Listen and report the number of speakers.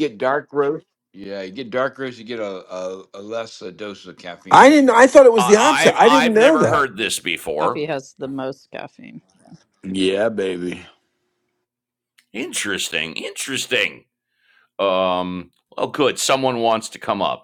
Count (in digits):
4